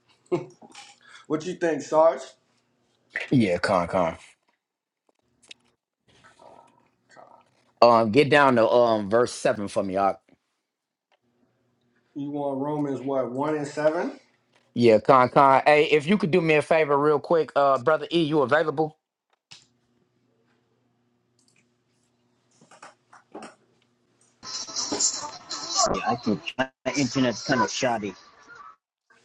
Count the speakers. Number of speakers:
three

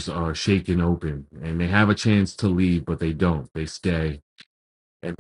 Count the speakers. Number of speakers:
one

